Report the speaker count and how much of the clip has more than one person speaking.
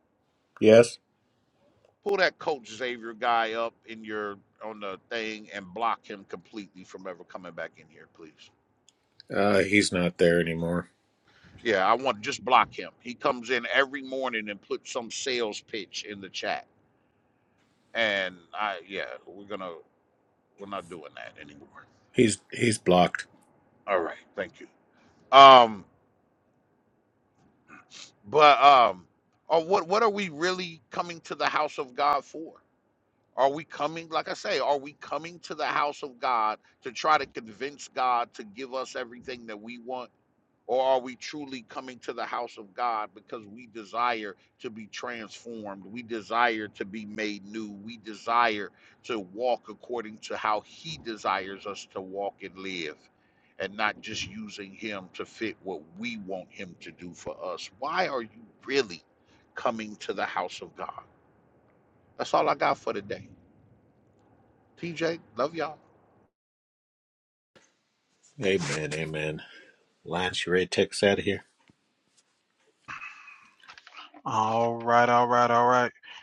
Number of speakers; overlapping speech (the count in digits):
3, no overlap